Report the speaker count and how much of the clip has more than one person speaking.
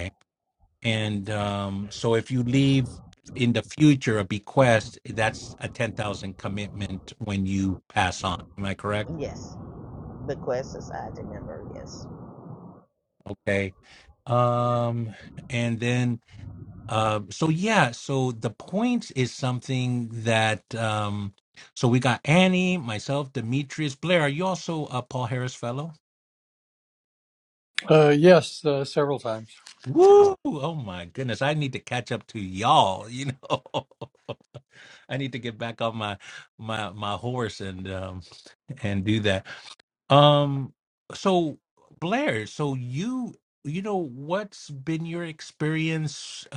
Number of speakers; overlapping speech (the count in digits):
3, no overlap